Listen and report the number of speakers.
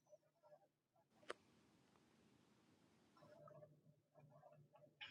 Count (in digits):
0